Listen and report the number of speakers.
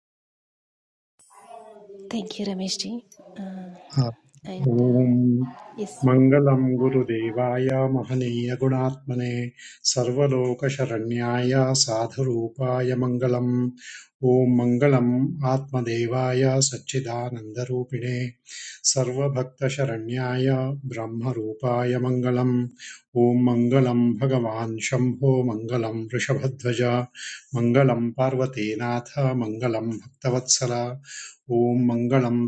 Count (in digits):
2